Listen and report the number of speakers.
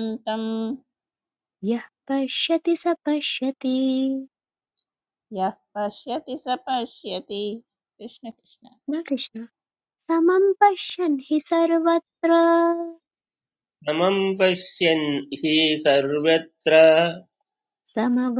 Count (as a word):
three